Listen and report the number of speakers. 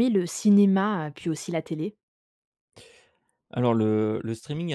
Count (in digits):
2